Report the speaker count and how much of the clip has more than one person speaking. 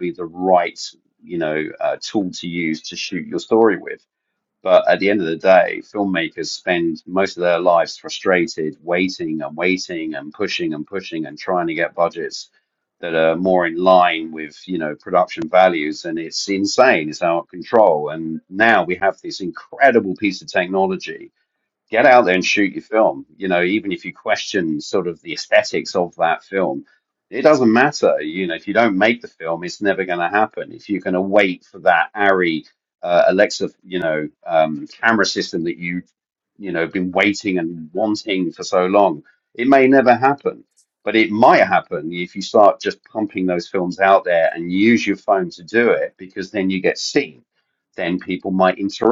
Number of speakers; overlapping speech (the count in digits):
1, no overlap